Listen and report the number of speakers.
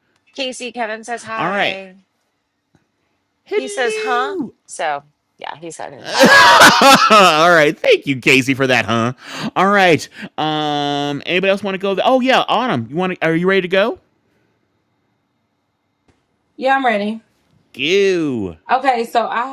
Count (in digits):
3